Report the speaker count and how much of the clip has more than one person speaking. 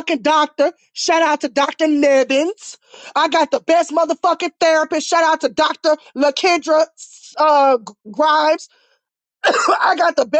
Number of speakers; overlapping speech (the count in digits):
1, no overlap